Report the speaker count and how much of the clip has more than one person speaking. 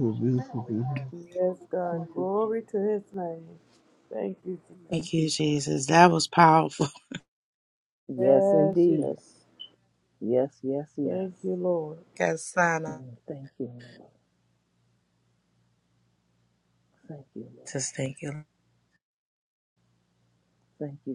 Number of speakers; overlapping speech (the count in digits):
4, about 10%